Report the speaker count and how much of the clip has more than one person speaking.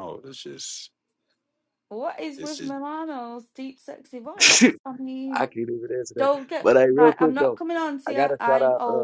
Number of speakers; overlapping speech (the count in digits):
3, about 28%